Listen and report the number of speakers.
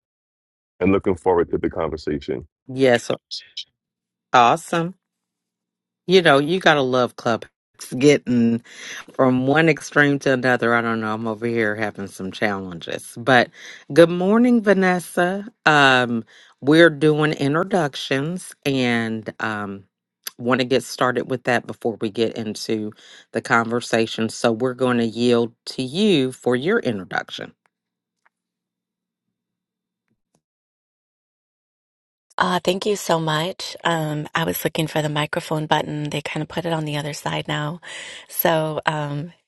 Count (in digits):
3